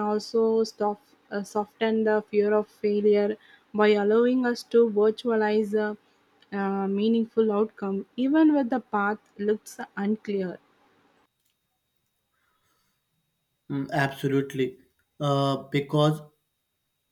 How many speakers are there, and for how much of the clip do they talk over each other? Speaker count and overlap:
two, no overlap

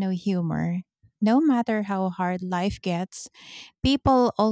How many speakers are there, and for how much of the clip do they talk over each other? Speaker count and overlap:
one, no overlap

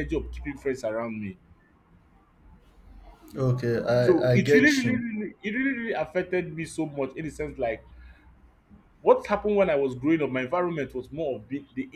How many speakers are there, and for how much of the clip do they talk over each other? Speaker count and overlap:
two, about 8%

